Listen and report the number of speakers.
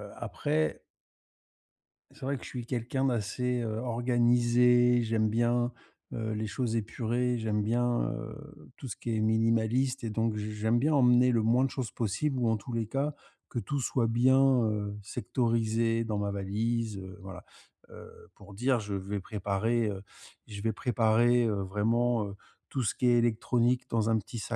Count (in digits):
1